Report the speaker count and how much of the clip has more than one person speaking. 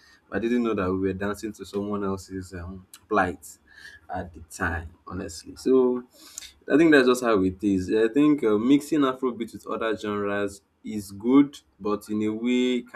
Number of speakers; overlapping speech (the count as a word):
one, no overlap